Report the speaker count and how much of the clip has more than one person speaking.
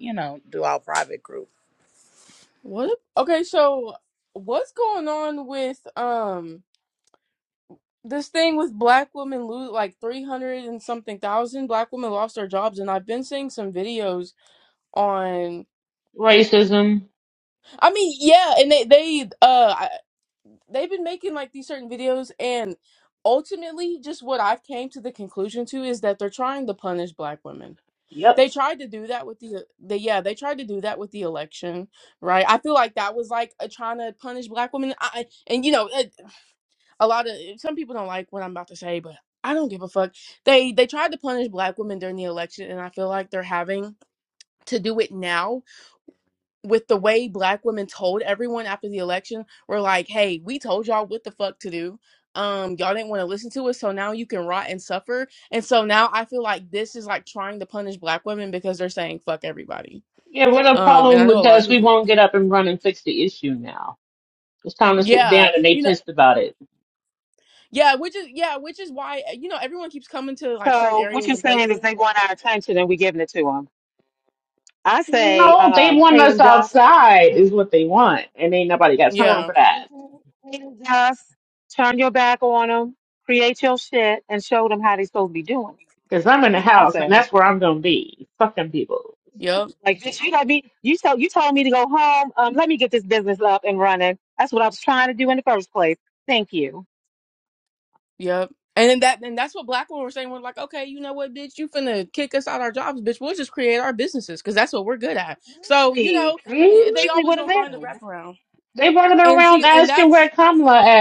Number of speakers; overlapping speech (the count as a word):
four, about 8%